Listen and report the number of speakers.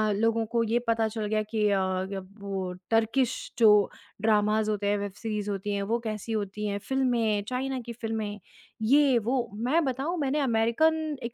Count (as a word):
one